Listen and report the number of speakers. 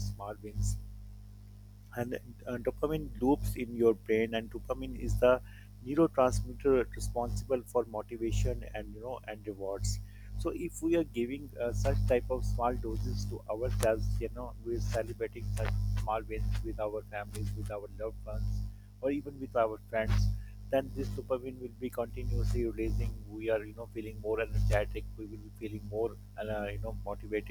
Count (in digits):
1